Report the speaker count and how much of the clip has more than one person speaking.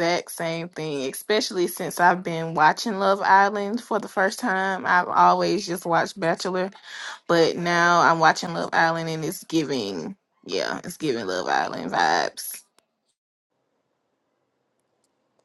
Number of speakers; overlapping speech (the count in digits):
1, no overlap